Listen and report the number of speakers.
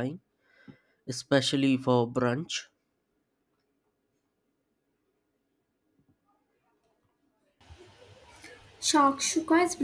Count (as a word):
two